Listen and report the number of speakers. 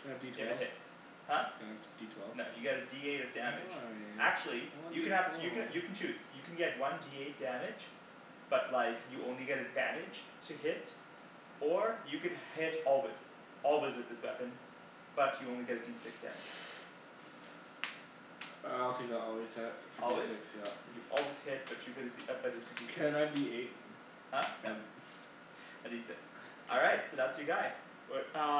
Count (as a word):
two